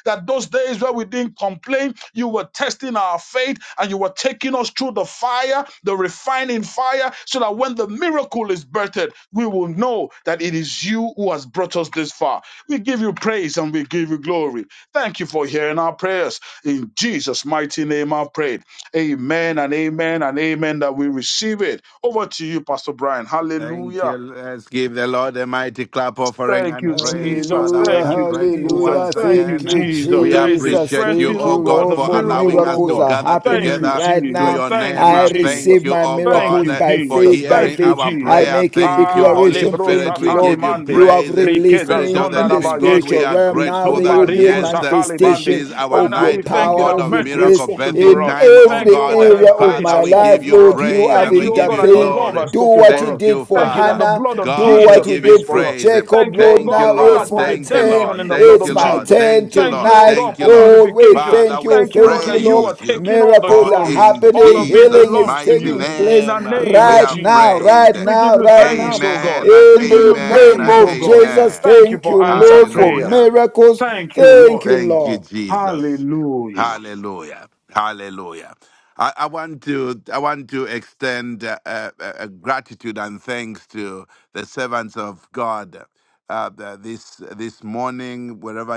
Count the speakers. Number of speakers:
three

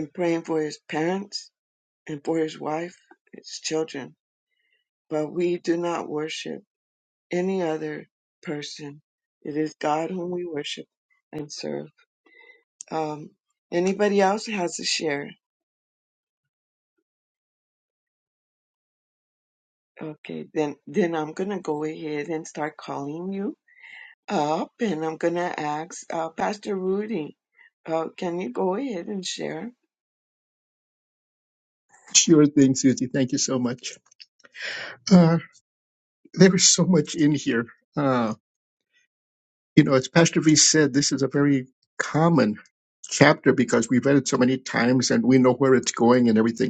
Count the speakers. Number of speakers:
two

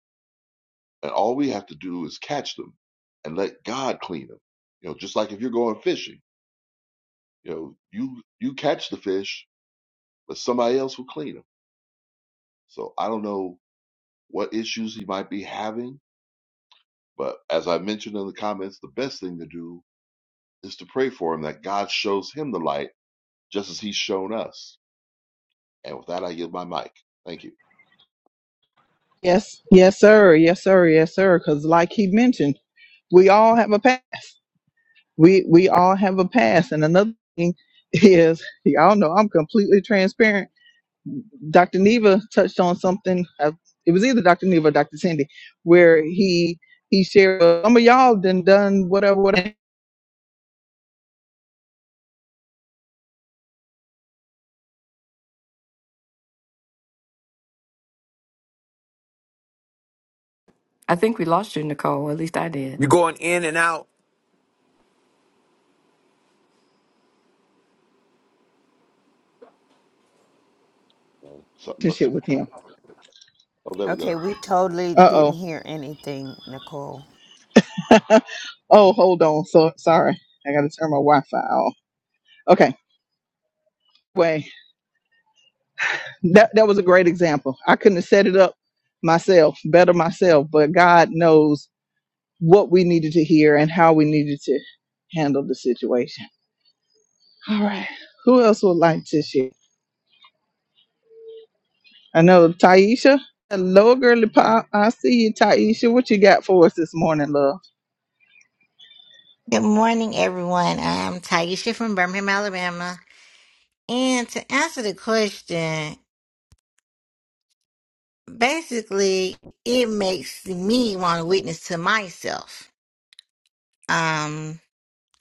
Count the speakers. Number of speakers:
six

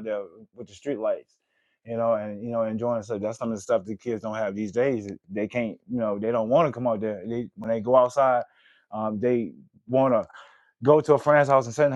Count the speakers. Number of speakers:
one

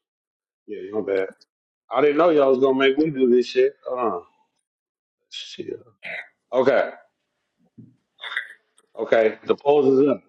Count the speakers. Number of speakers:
one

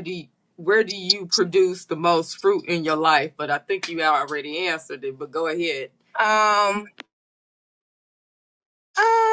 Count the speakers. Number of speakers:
two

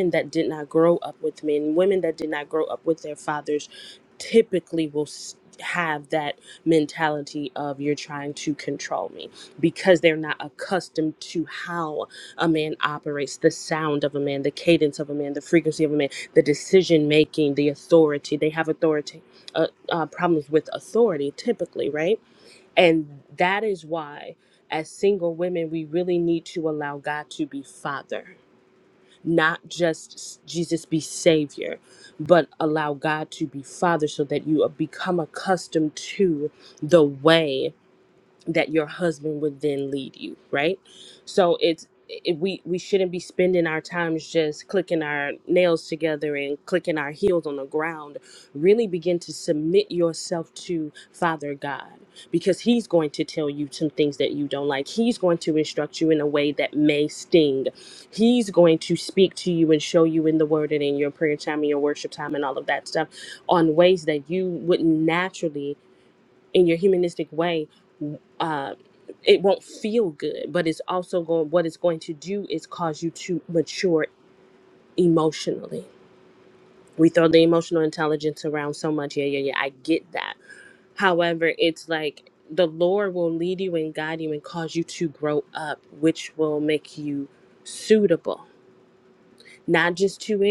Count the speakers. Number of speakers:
one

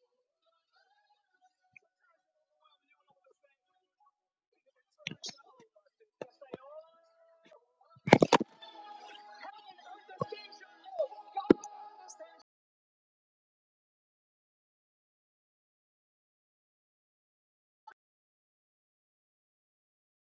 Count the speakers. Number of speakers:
zero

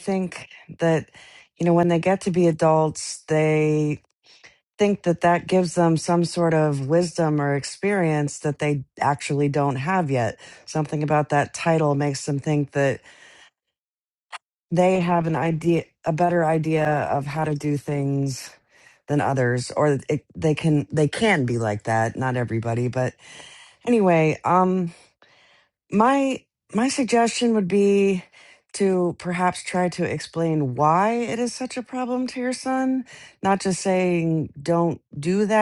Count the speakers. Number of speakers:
one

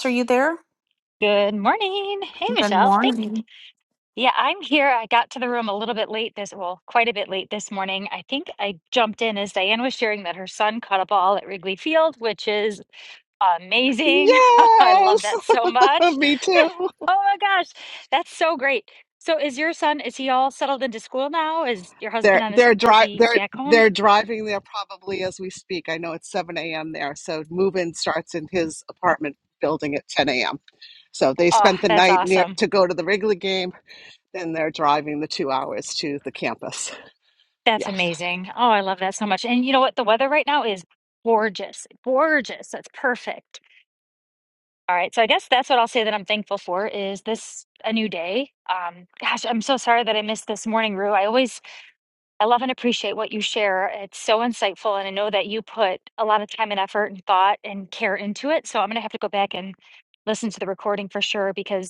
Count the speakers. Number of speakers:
three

